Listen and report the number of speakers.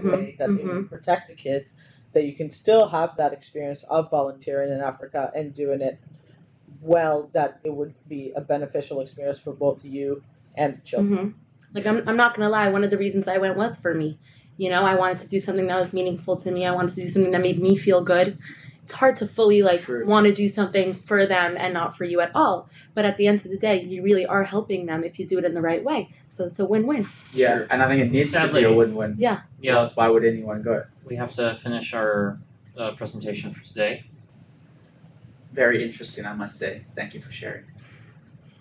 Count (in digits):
4